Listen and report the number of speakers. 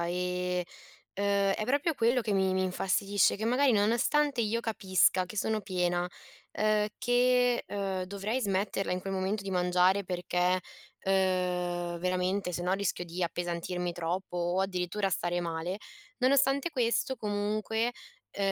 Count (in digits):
1